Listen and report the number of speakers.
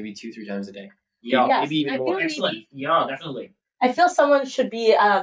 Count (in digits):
3